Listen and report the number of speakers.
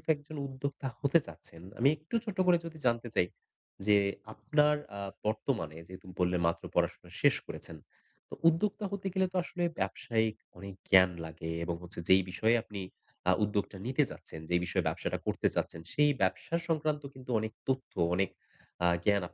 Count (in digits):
1